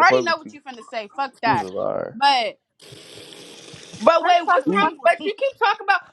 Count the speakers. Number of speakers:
3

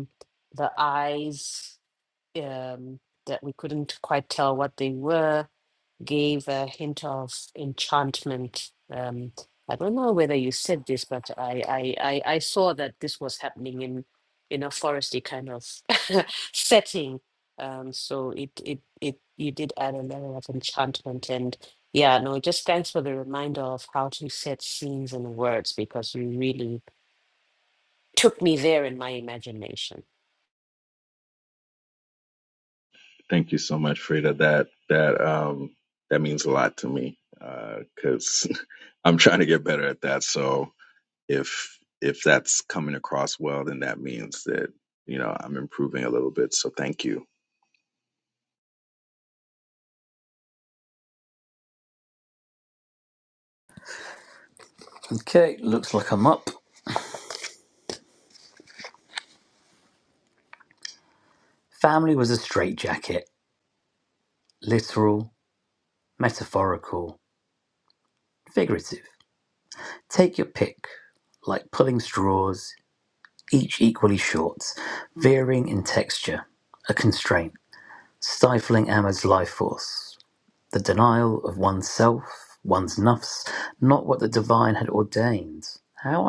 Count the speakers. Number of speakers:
3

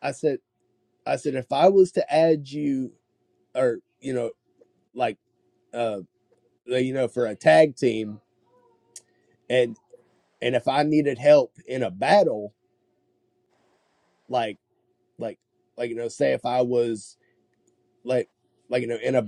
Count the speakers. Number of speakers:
1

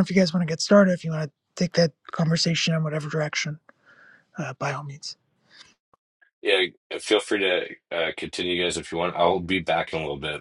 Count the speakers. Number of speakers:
2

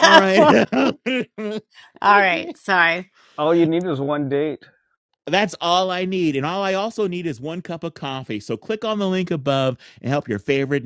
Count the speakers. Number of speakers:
3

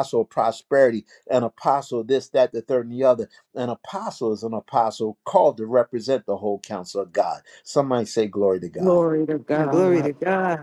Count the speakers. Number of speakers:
3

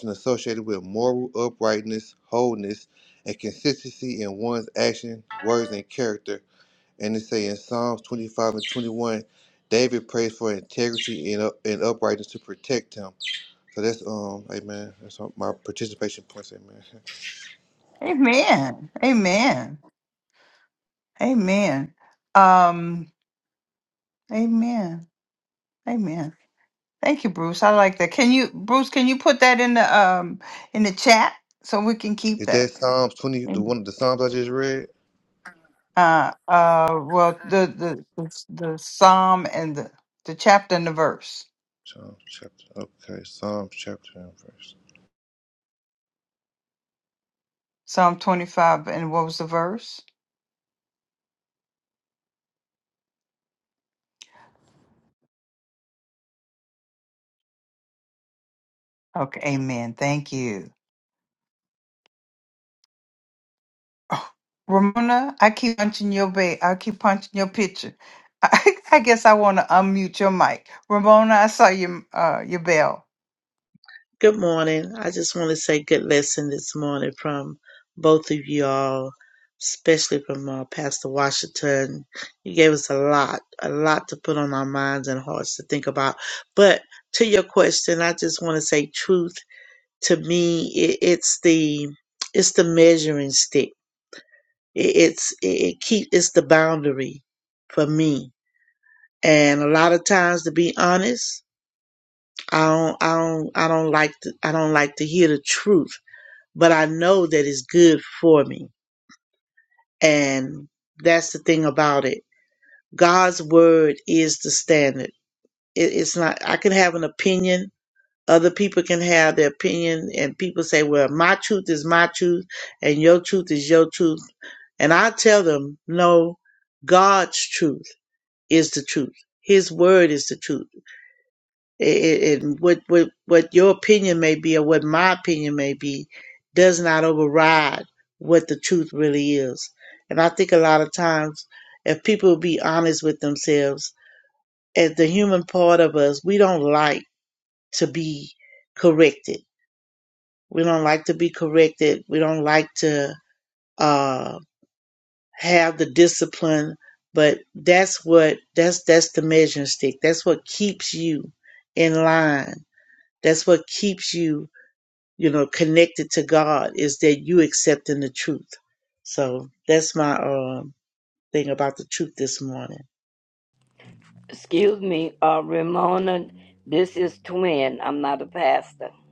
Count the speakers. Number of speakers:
4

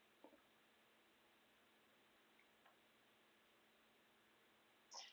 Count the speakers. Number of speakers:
0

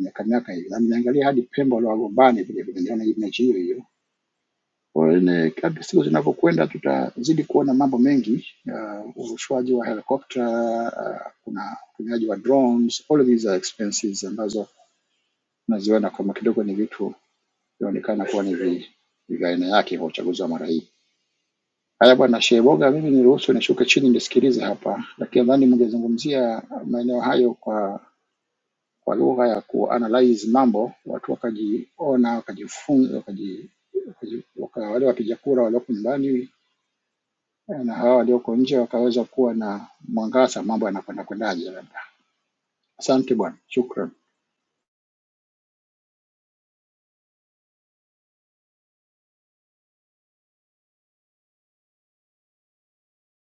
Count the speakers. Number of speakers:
1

